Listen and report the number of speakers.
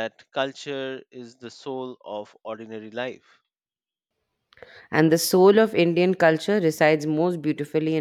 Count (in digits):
2